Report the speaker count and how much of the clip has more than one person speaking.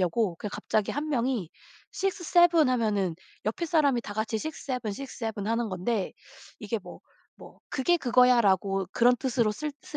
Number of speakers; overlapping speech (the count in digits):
1, no overlap